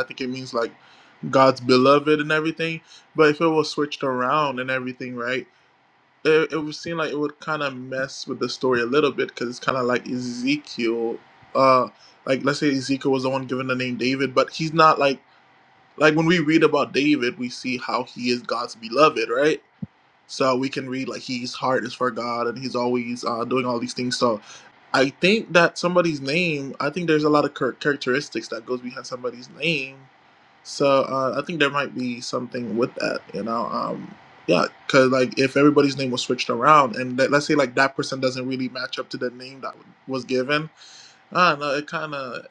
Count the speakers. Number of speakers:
one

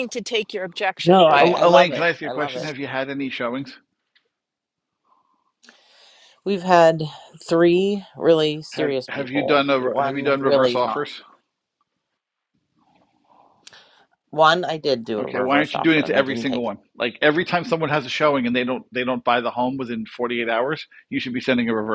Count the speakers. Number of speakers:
three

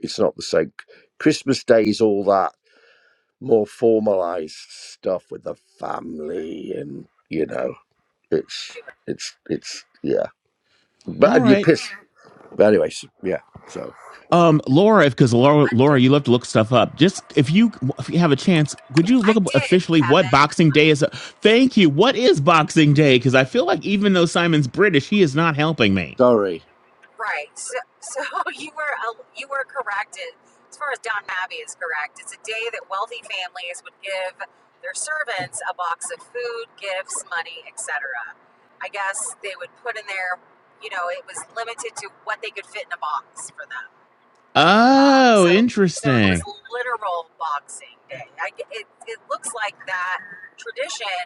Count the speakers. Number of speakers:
three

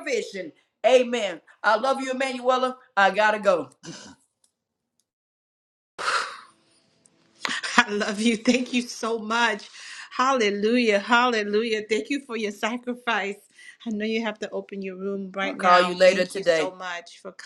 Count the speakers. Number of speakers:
two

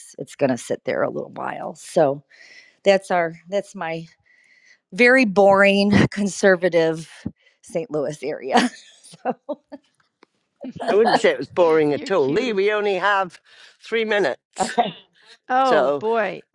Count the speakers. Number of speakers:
three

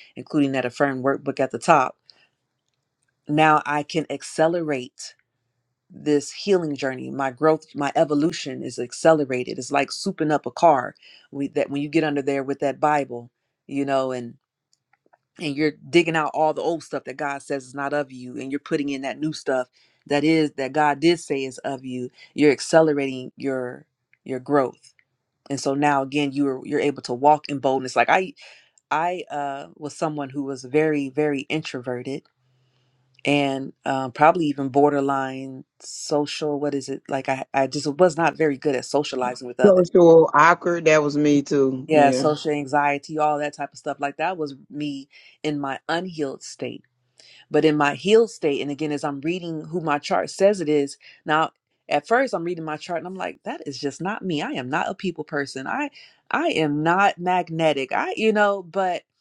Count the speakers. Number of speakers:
two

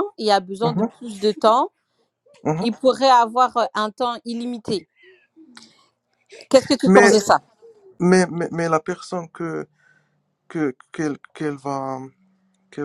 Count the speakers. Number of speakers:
two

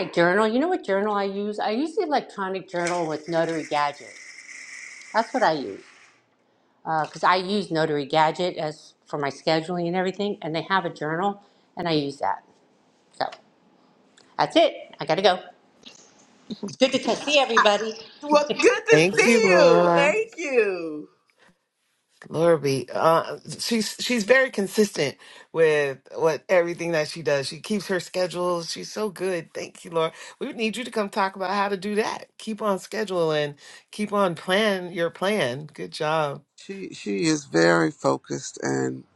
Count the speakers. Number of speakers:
four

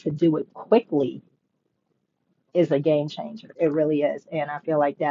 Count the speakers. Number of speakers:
one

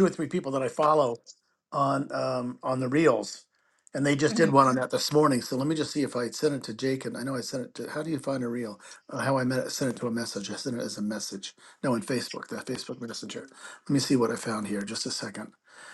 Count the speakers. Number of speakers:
one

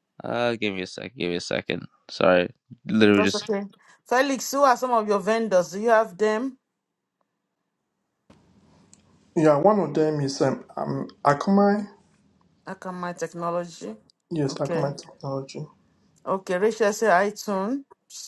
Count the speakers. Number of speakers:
three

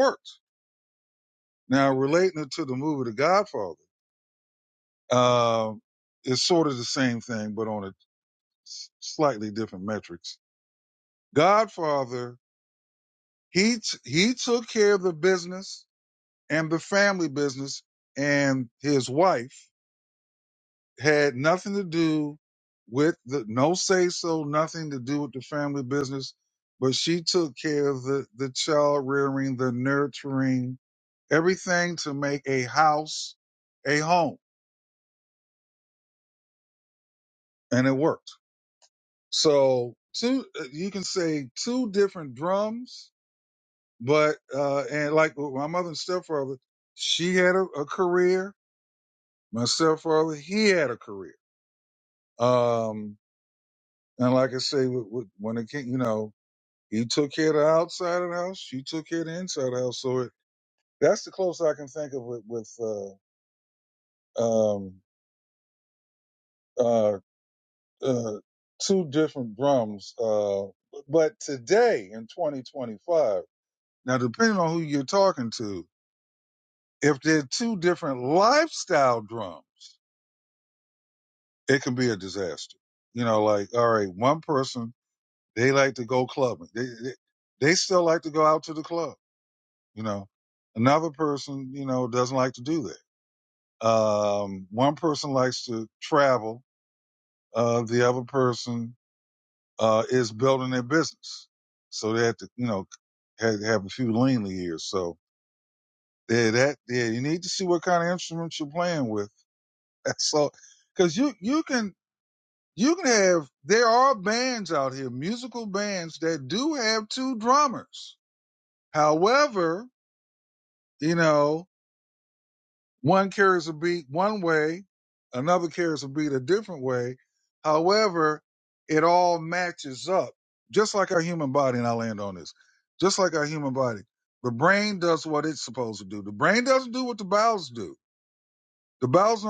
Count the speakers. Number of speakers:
one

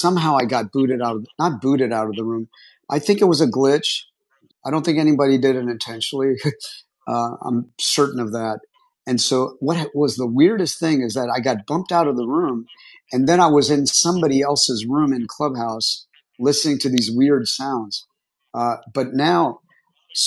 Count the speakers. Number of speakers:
one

